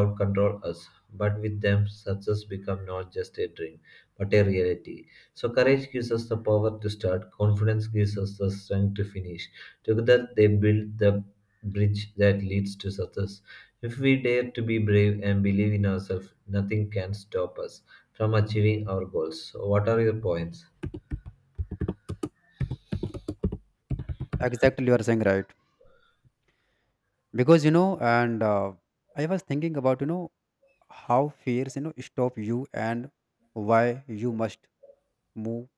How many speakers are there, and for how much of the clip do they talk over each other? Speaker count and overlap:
two, no overlap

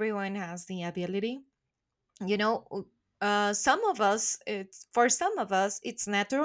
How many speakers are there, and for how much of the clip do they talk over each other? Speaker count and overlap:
one, no overlap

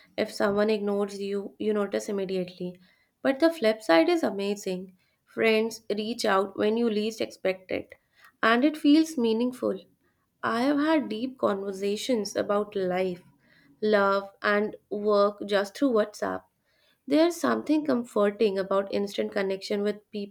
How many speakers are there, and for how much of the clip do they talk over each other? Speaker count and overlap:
one, no overlap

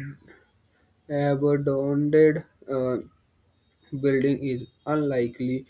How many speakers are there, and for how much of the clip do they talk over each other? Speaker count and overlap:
one, no overlap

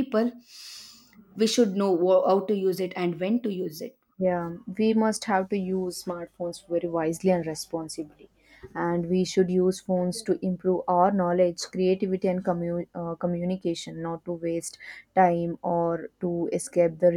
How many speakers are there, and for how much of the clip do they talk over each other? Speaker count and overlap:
two, no overlap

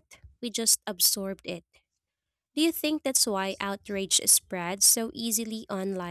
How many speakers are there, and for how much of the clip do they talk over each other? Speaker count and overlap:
one, no overlap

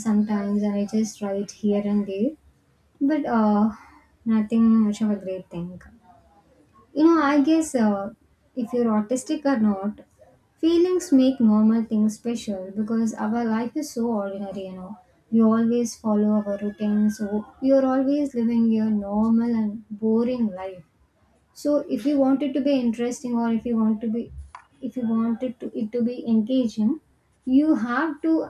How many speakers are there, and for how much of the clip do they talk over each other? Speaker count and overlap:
one, no overlap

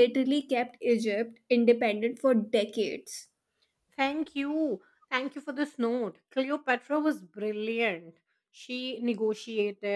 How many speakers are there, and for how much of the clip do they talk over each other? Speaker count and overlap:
two, no overlap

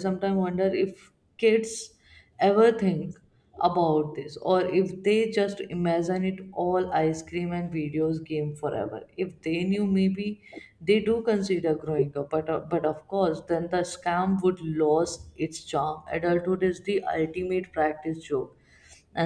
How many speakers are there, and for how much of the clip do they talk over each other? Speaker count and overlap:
one, no overlap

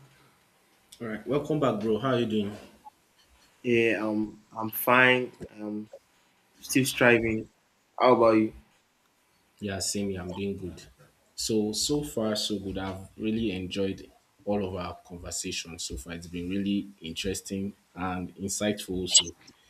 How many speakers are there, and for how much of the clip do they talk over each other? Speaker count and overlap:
two, no overlap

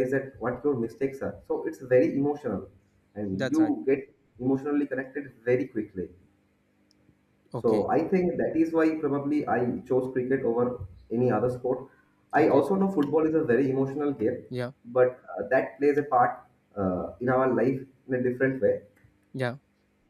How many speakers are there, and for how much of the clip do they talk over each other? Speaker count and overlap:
two, about 4%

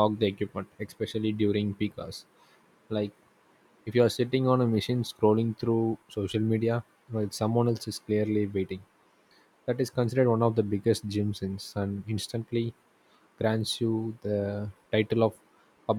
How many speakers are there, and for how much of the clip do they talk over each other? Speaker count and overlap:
one, no overlap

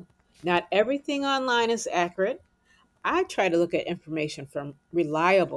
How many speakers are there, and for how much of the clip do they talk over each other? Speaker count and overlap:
one, no overlap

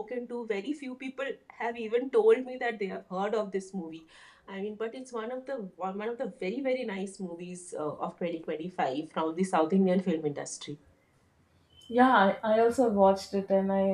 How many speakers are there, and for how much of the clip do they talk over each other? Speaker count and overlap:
two, no overlap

